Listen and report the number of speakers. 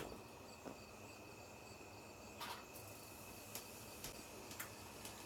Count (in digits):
0